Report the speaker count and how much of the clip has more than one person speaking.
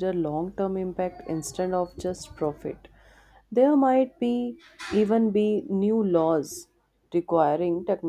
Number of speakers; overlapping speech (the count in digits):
1, no overlap